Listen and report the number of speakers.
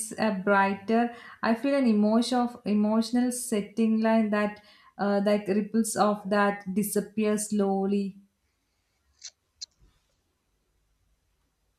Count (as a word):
one